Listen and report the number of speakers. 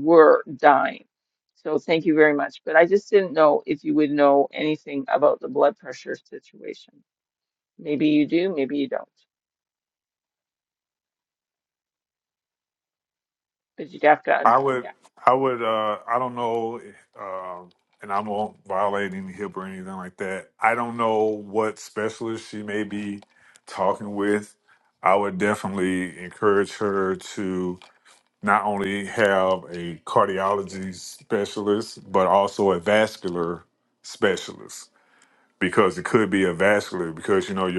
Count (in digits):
2